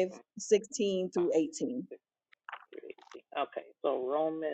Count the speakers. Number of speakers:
two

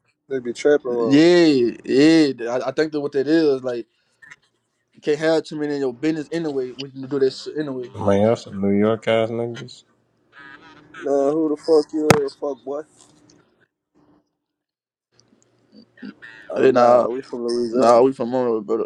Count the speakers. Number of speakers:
three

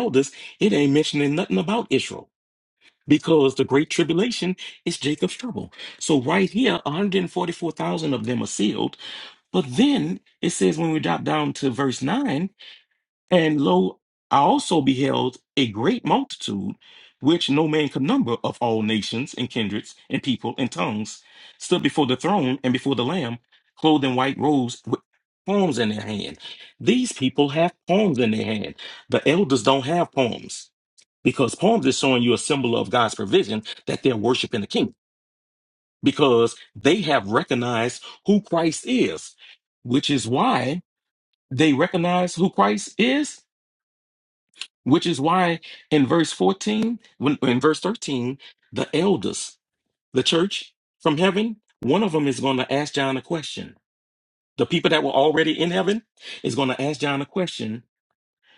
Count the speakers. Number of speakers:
one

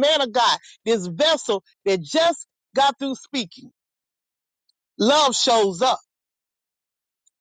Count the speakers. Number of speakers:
one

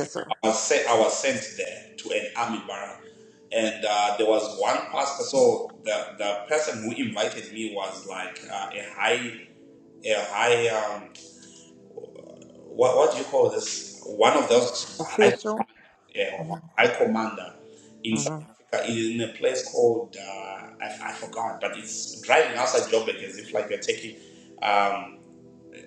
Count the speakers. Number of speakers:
two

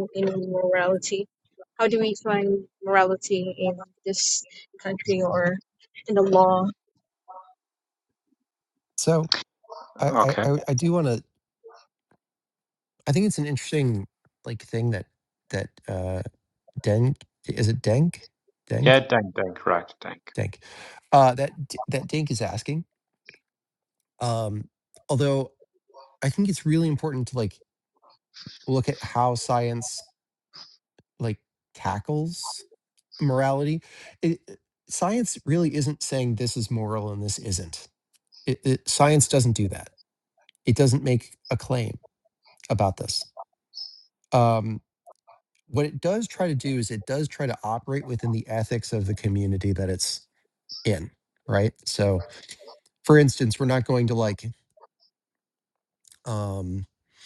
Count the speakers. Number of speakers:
three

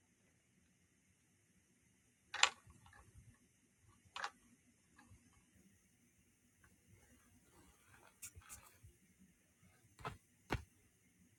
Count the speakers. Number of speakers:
zero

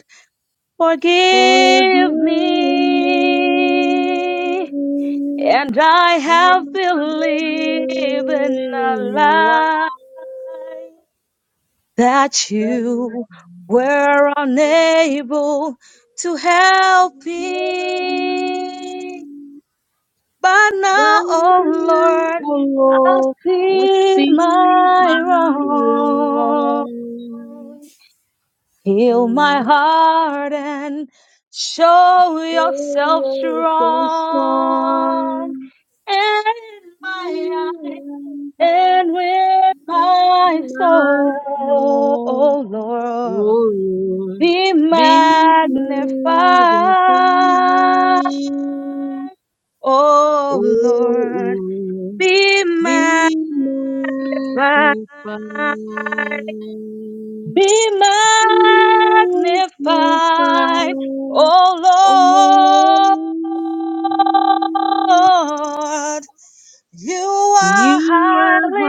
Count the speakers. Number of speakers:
two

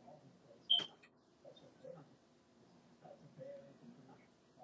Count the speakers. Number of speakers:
zero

